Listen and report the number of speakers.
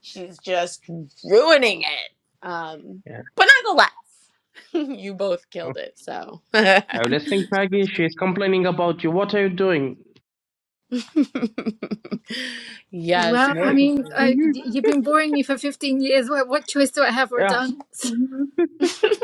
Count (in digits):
3